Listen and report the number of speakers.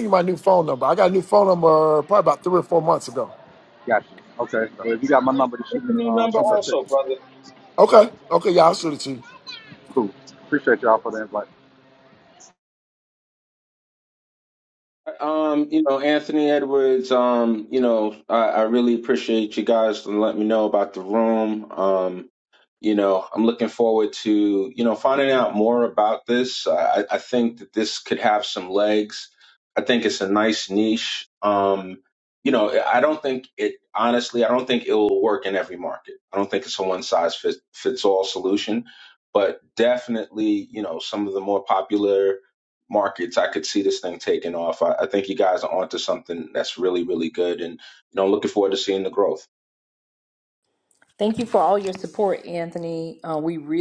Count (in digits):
4